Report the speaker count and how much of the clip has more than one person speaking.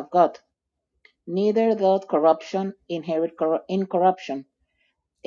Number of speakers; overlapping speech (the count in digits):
1, no overlap